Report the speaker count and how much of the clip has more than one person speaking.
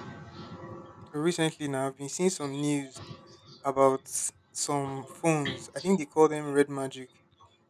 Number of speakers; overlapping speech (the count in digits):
1, no overlap